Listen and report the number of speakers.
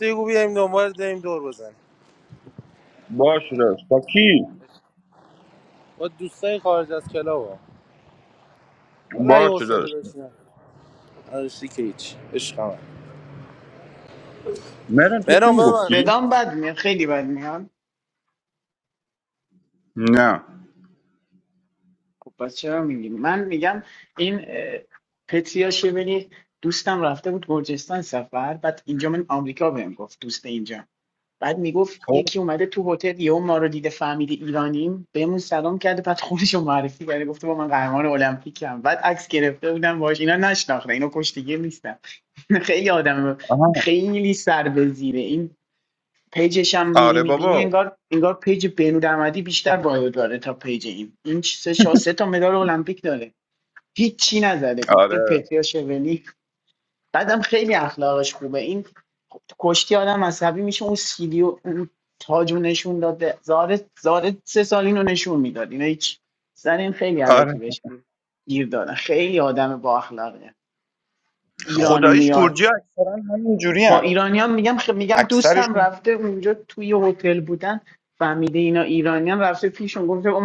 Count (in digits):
3